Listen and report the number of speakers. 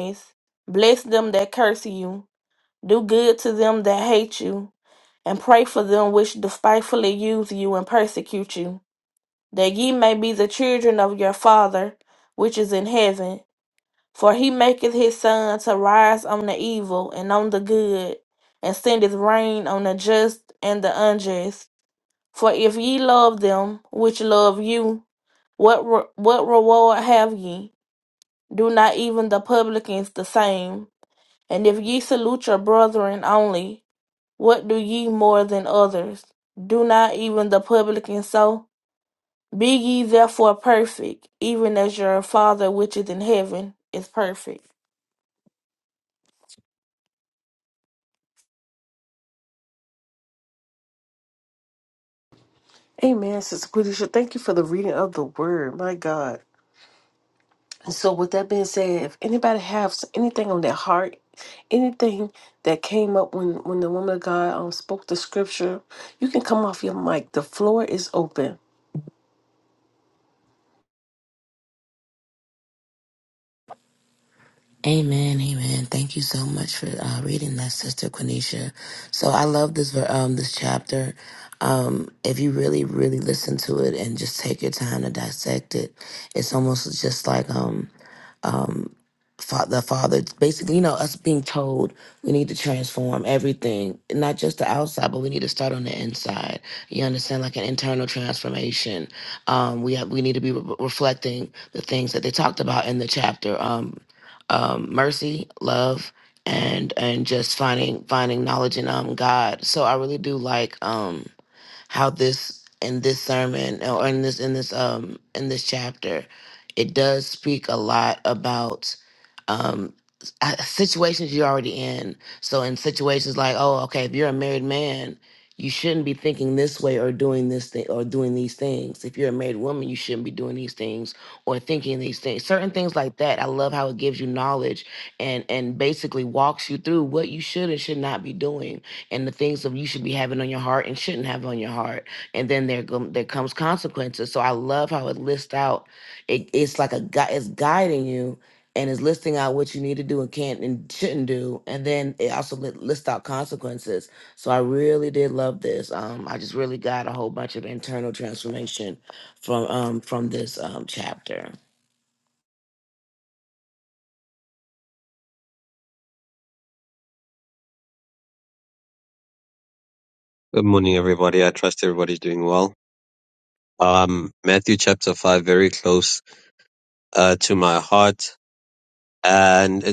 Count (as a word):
four